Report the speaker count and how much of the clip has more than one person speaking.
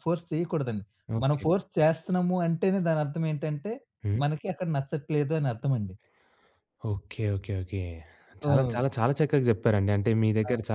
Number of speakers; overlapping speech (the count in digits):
2, about 8%